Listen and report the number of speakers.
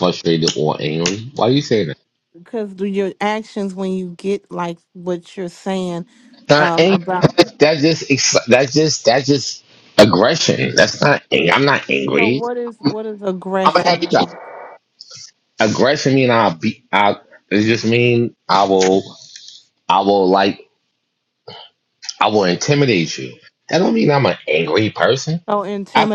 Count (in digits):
2